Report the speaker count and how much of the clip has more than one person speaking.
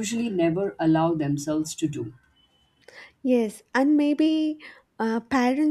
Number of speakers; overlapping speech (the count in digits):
2, no overlap